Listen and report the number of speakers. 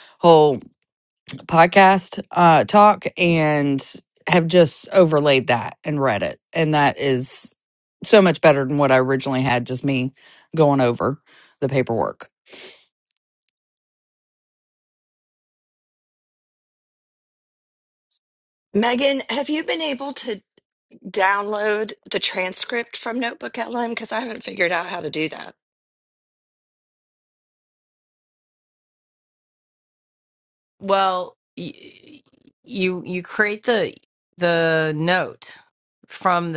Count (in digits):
3